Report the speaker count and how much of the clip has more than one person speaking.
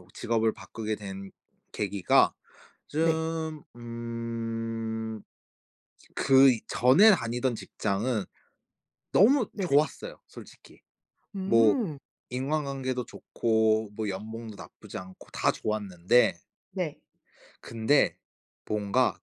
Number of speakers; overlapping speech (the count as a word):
two, about 3%